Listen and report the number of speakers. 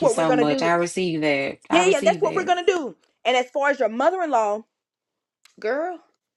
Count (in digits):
2